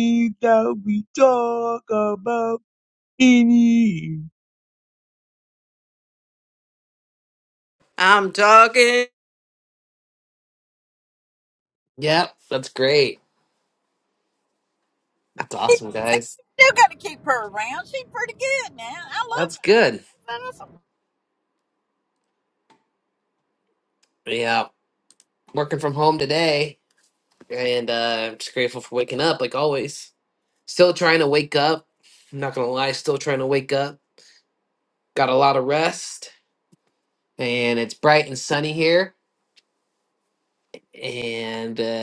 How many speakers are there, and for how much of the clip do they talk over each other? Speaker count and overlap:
four, under 1%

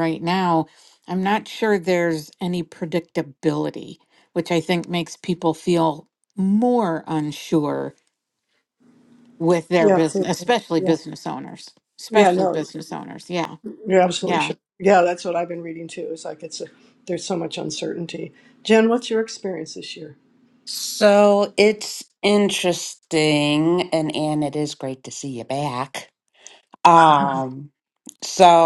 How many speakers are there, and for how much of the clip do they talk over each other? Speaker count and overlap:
three, about 7%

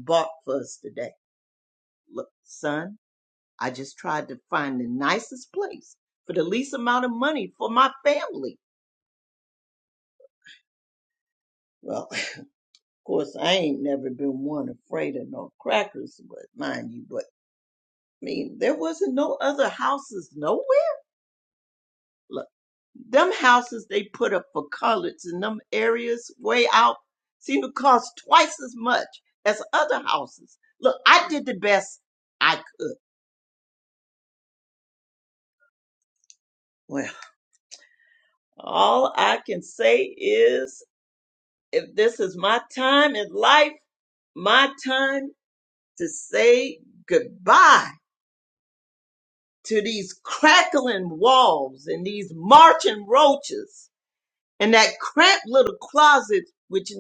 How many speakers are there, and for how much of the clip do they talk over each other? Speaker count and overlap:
one, no overlap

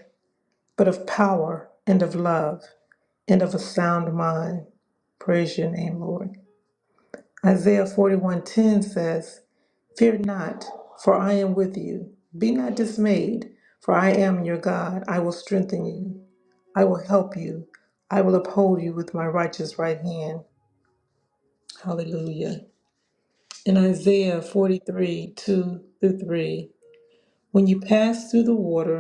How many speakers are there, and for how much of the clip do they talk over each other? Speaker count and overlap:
one, no overlap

